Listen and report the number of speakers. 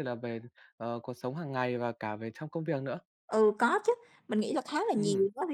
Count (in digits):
2